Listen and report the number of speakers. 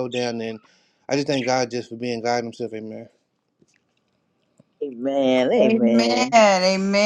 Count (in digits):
3